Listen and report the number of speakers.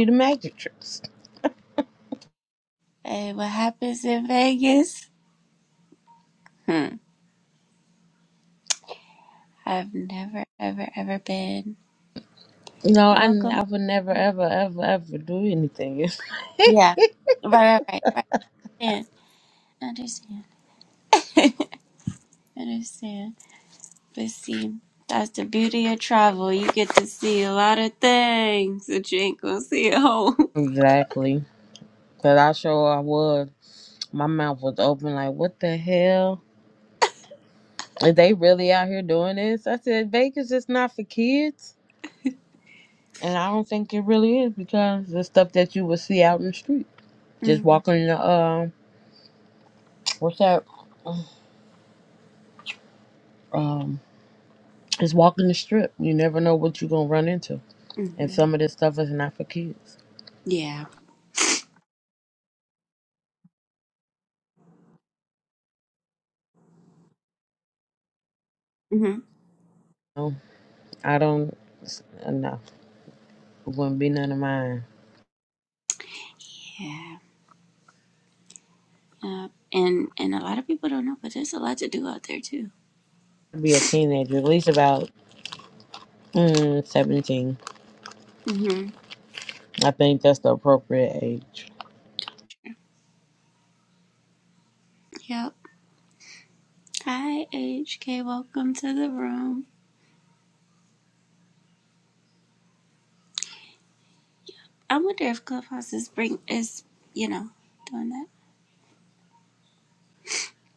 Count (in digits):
2